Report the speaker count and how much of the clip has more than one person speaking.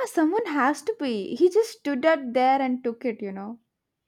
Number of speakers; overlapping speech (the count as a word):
one, no overlap